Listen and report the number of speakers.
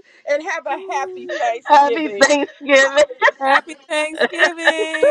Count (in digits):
3